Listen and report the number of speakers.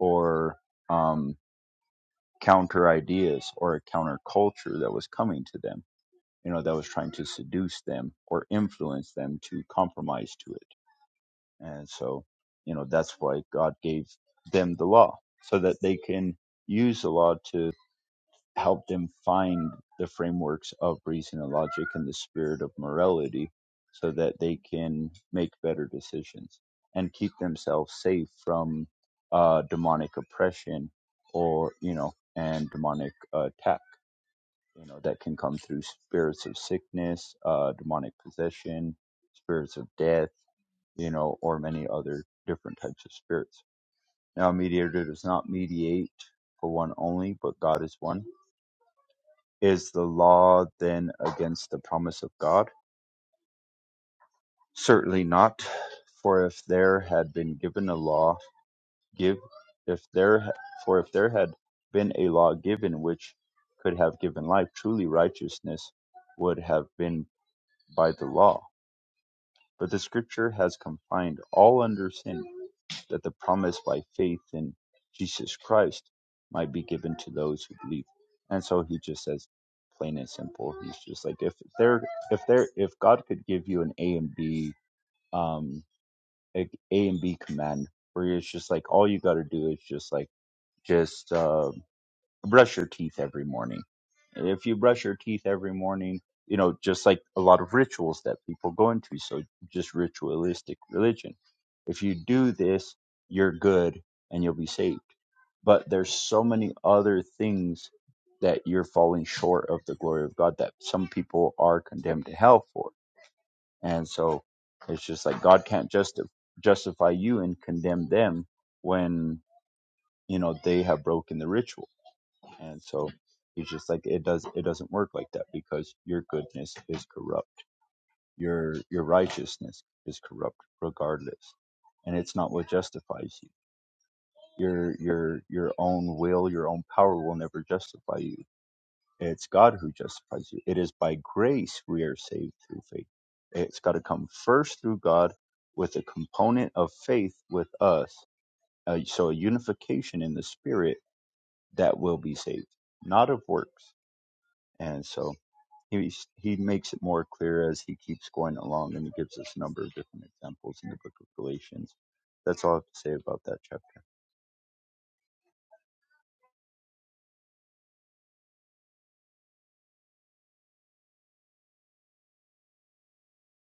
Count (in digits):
1